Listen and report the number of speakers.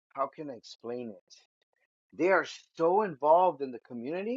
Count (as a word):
one